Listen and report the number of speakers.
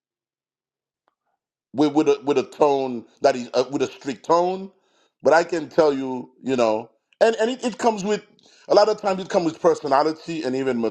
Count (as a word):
one